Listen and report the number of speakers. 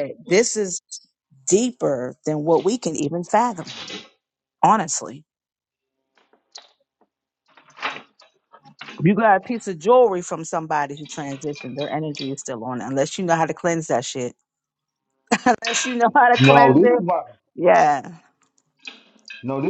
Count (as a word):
two